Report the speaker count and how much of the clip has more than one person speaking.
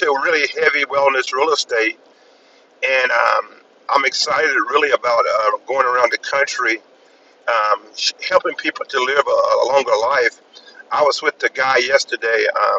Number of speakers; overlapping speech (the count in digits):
1, no overlap